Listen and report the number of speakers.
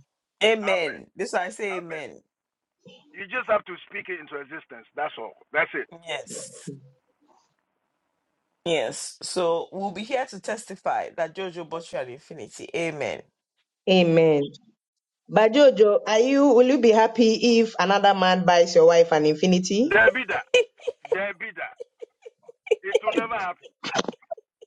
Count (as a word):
three